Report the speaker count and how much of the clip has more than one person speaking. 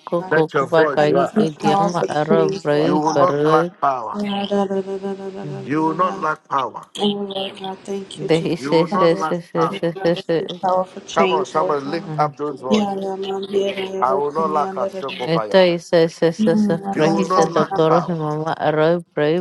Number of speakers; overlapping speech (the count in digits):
3, about 50%